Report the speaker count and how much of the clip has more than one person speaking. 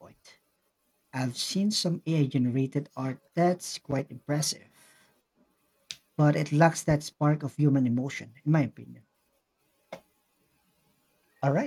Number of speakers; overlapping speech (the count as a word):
one, no overlap